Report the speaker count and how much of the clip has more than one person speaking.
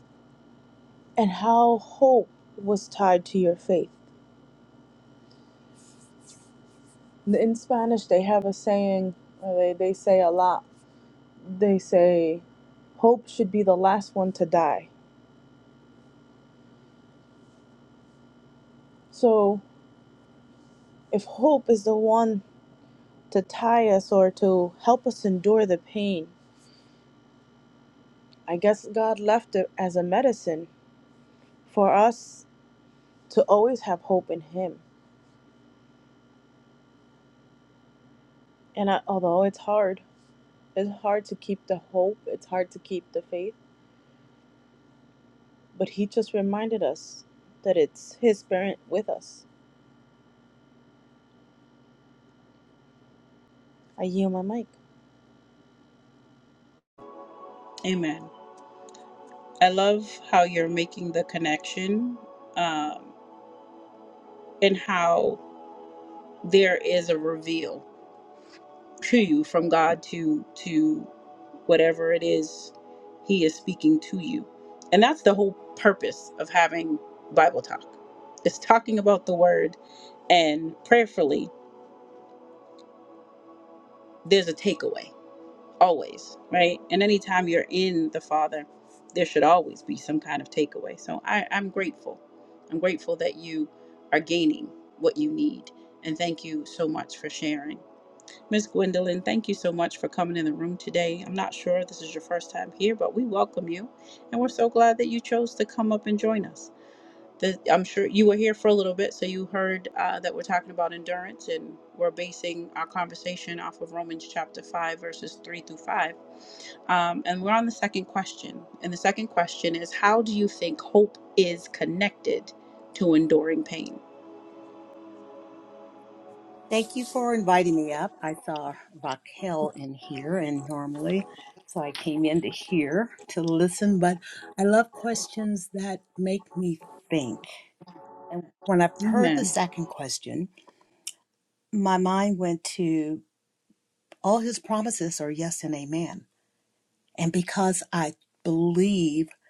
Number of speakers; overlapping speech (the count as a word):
three, under 1%